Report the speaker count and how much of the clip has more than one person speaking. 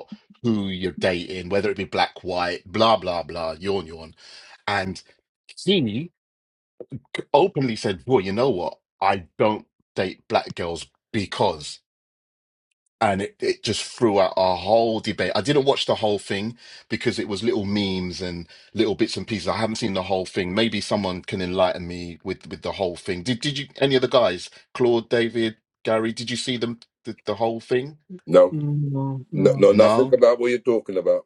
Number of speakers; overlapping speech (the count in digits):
3, about 2%